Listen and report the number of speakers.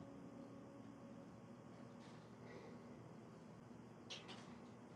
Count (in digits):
0